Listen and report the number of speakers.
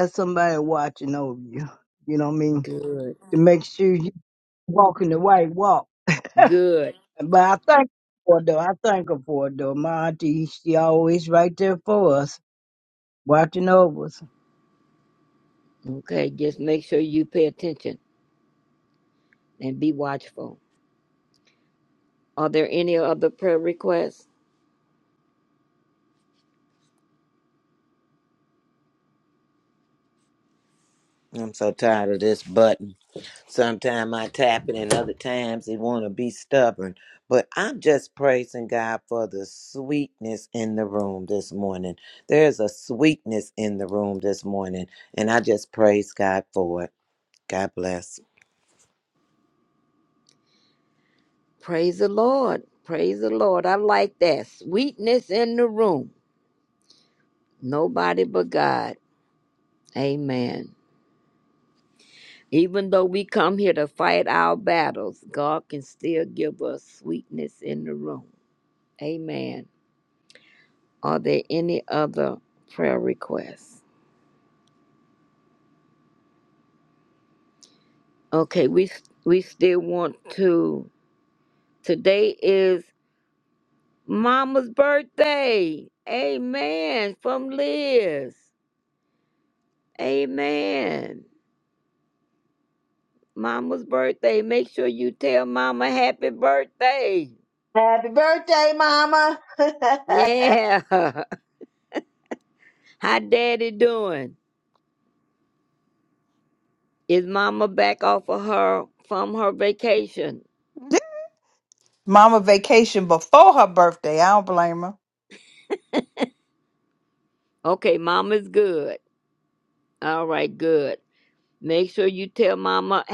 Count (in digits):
5